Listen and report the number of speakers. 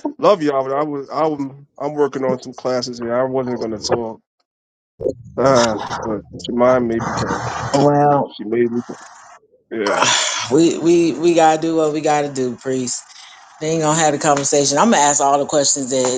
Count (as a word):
two